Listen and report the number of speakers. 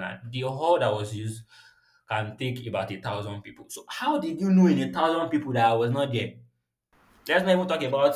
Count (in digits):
1